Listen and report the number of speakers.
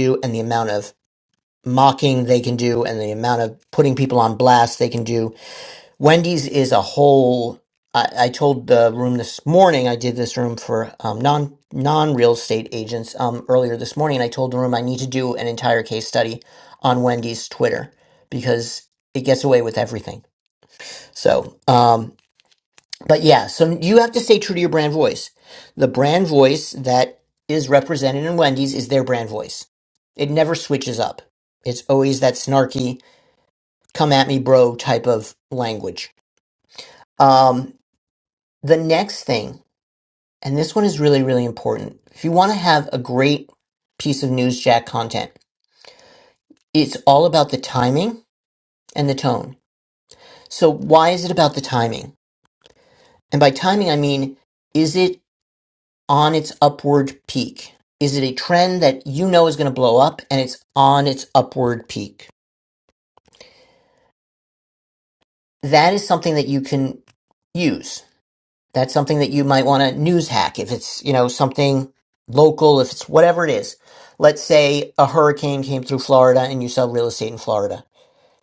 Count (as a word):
one